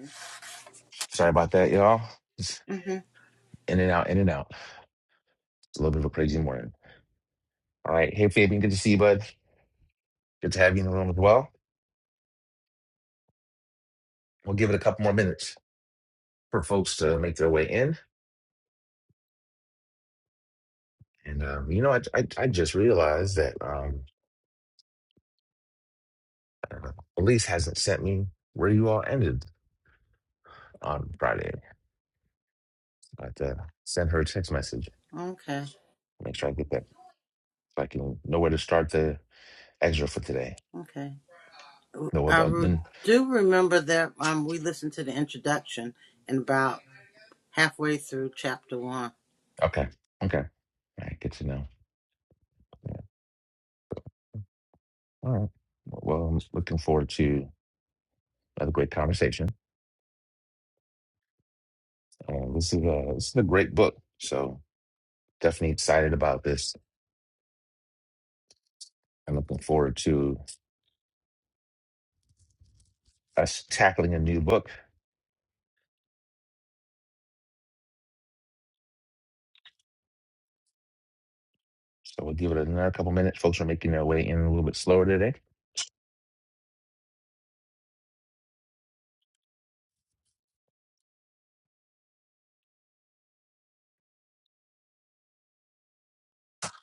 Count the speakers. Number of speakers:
two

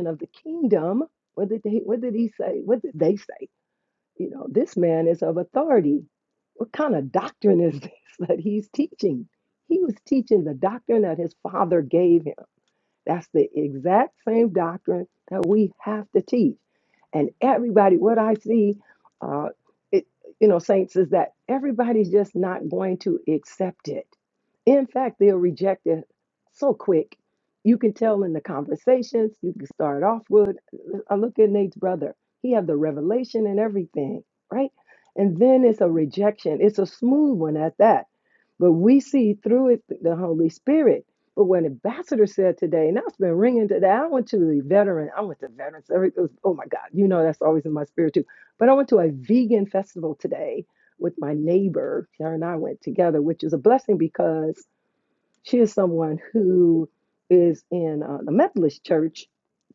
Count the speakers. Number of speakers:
one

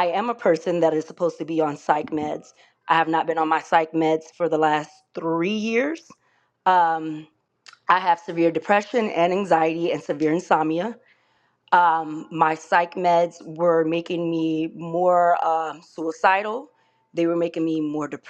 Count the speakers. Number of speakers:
one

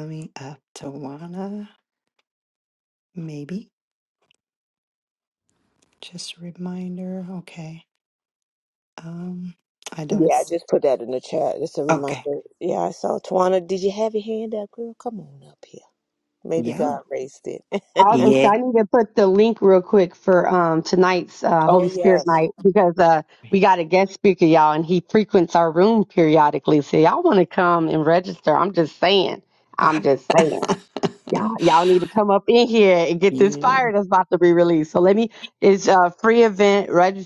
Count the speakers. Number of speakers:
three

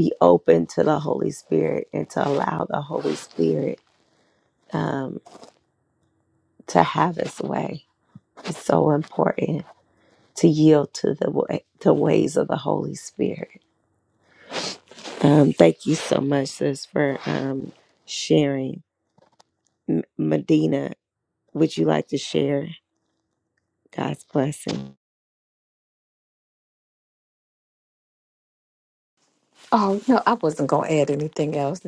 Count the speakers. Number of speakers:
two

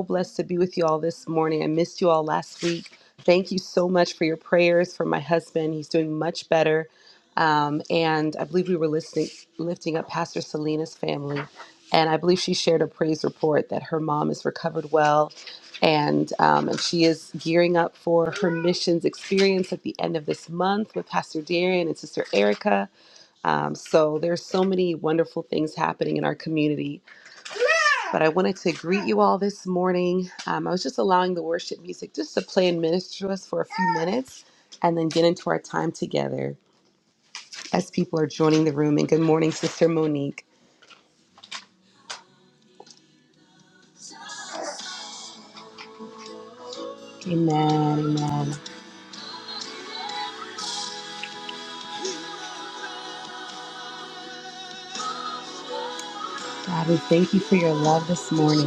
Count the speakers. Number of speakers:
one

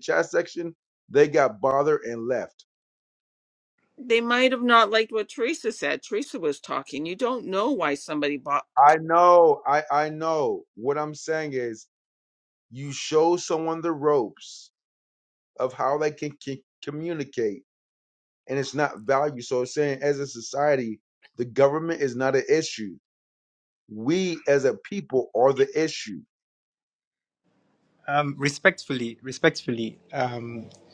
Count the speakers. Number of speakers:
three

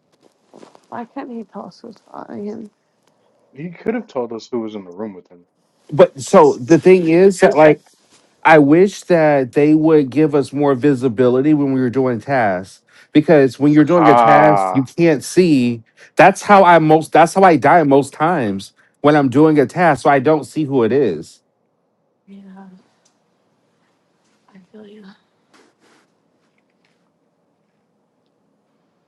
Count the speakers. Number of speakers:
three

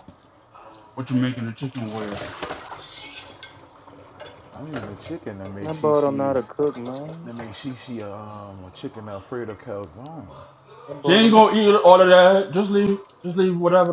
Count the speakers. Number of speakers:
three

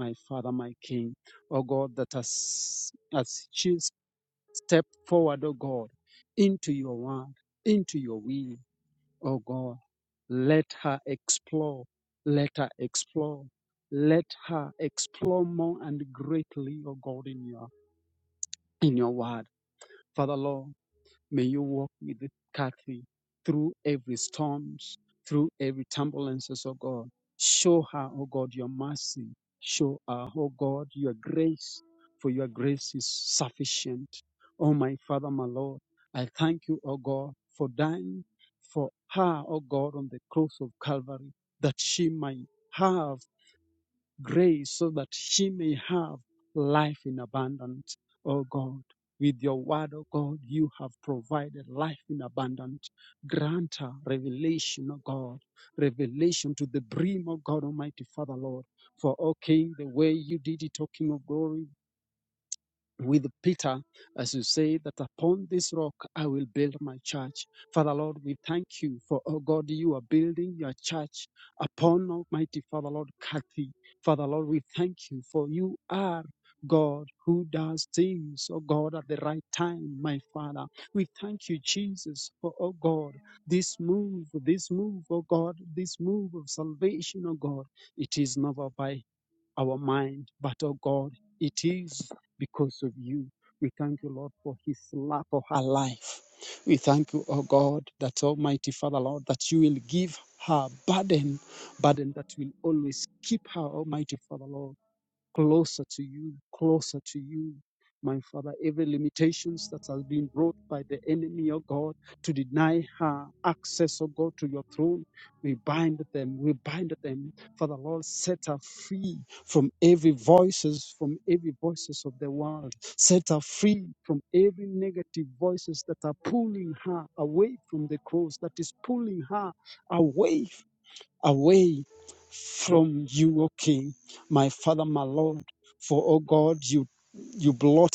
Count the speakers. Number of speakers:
one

